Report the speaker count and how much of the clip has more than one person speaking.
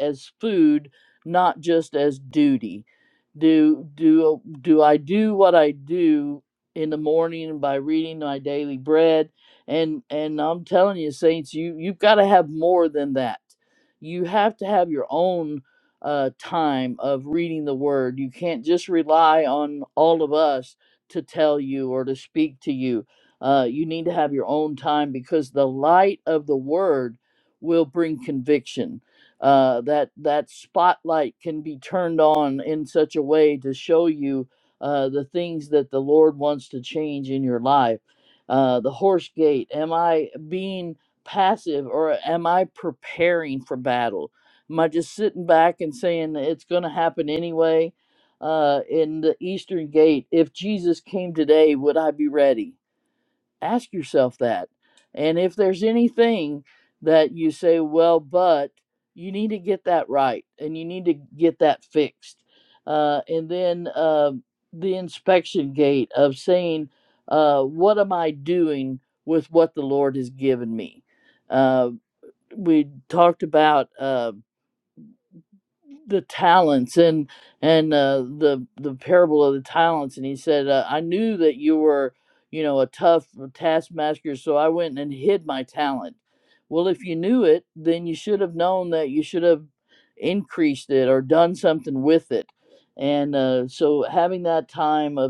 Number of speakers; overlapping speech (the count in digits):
1, no overlap